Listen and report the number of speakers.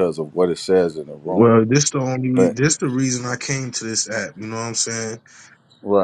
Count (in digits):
2